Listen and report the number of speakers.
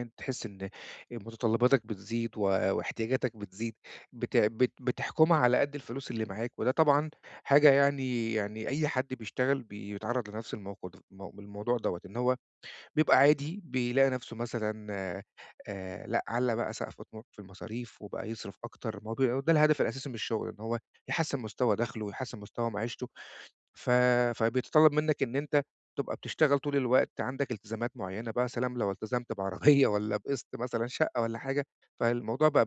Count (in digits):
1